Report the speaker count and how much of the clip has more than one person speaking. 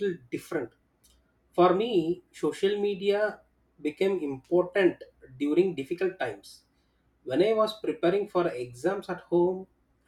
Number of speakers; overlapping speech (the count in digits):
1, no overlap